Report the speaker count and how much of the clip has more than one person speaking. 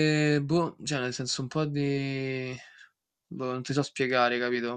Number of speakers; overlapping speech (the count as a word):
one, no overlap